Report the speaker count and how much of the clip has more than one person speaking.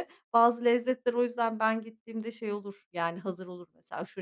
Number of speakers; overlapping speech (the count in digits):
1, no overlap